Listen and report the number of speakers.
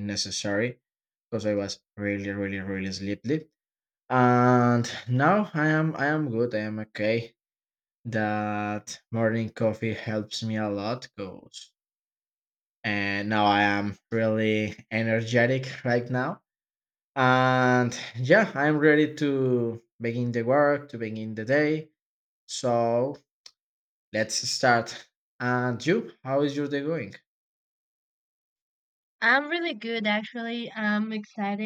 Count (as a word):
two